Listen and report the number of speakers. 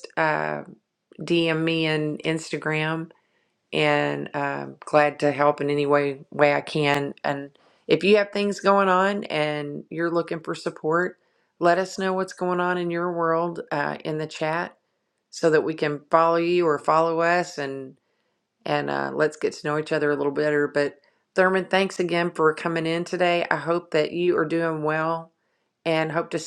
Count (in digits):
1